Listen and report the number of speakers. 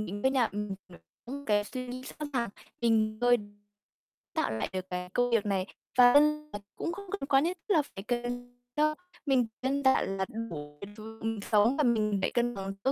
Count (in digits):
1